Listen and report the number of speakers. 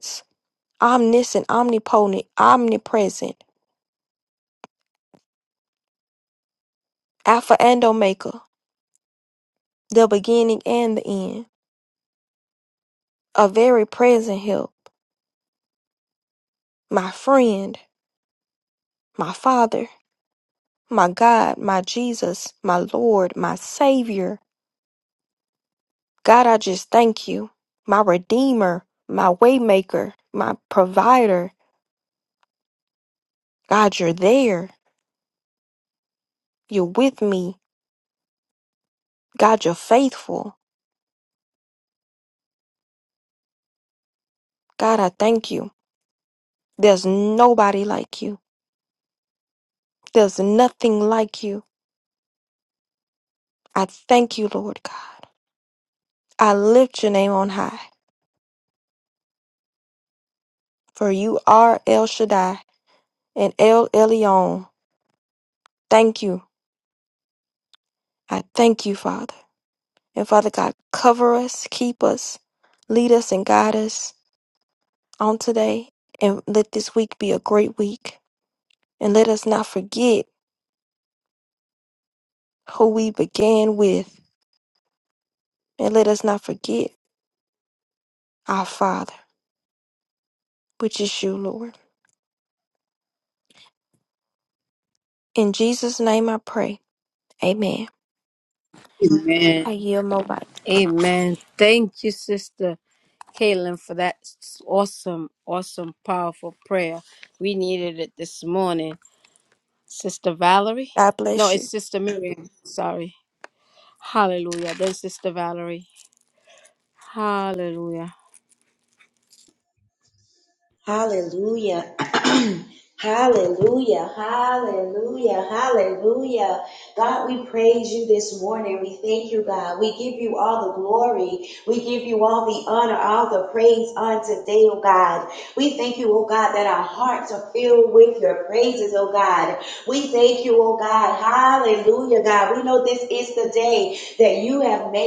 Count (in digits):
3